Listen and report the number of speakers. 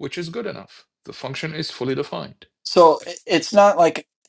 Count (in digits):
2